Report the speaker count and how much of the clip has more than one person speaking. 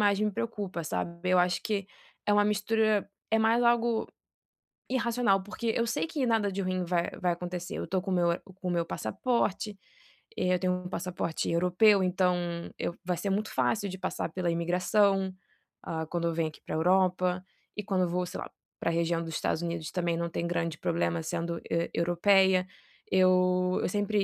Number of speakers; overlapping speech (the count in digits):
1, no overlap